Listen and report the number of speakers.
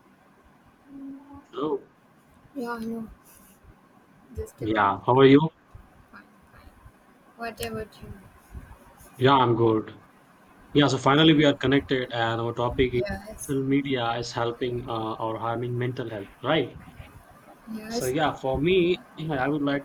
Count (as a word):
two